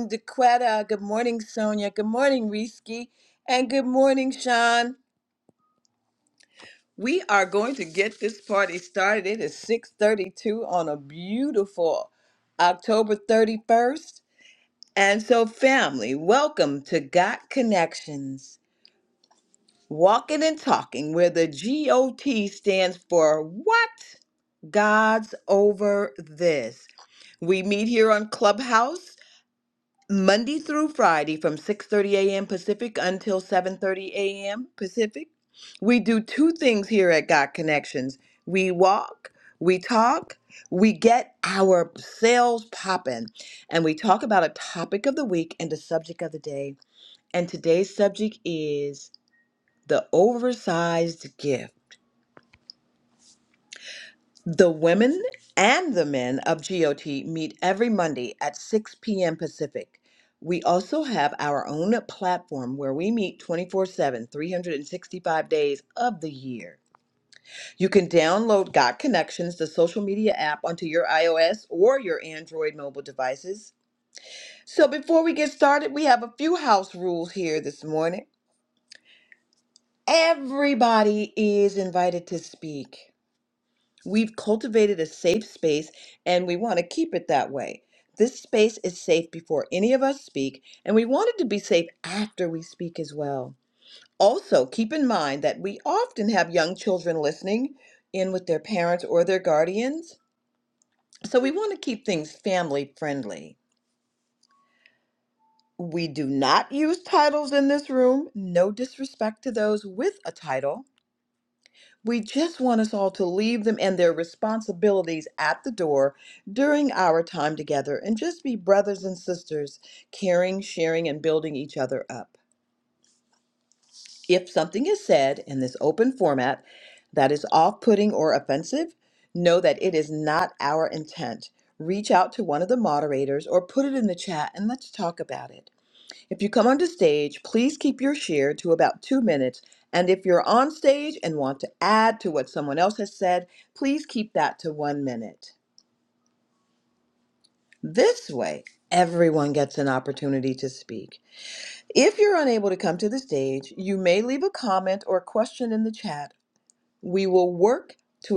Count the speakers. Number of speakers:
1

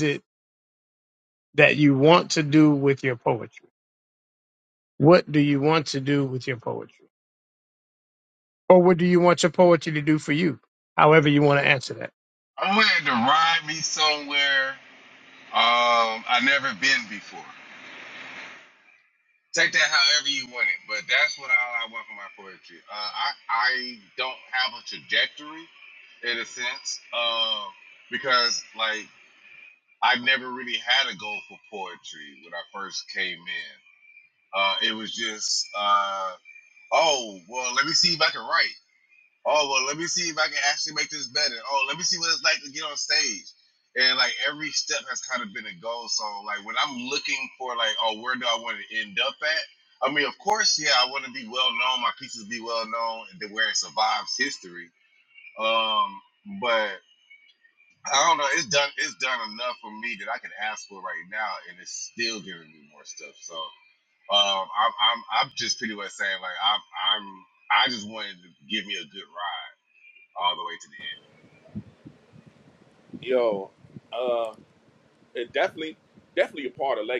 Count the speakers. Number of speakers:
3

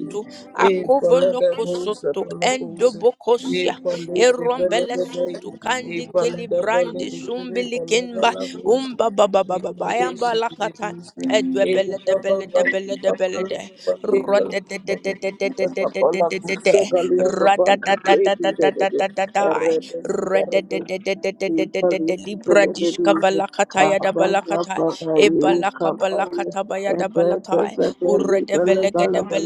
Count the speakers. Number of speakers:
2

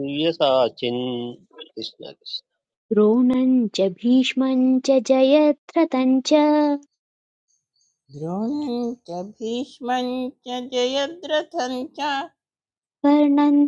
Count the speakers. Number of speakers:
3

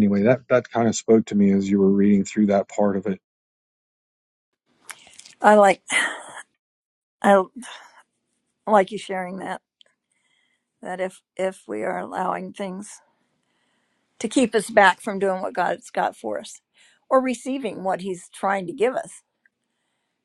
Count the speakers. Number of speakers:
2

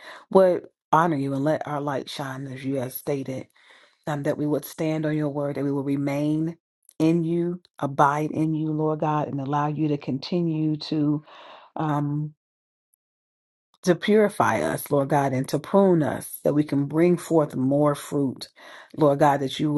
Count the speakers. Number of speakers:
1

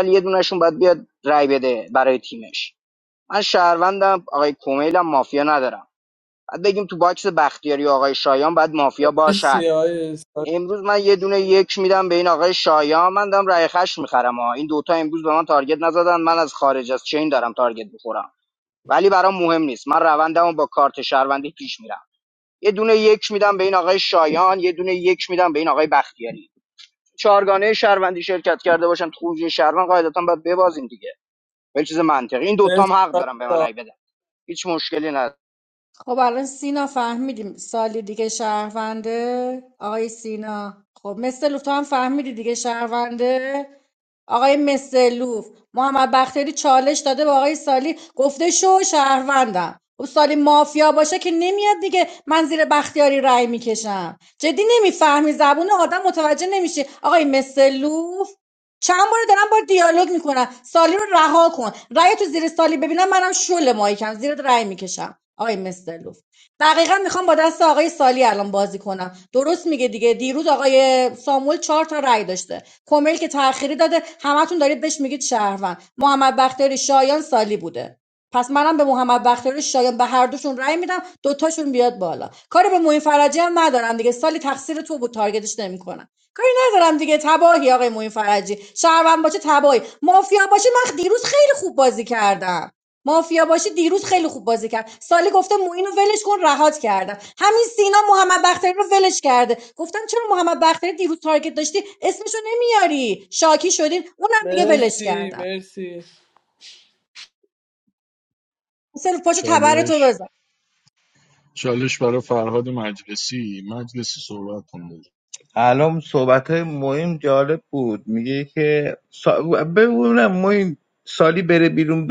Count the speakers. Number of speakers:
5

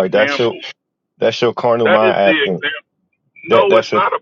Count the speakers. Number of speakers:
2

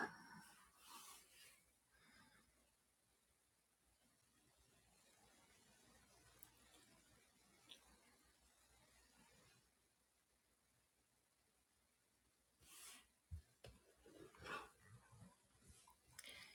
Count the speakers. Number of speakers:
0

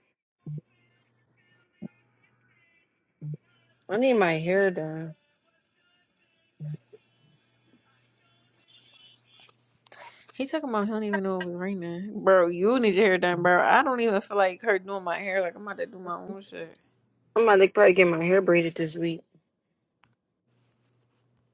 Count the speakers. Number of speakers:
2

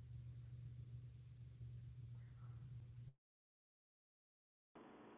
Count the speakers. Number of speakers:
0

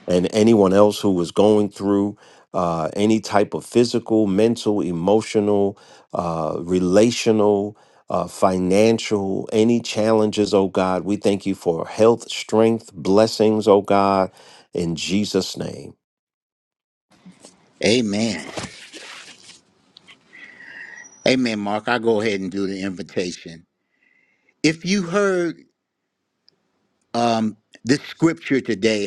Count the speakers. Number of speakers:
2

